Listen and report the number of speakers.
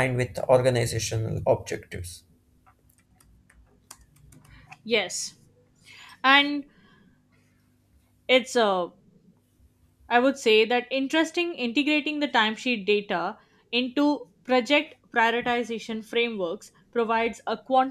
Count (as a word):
two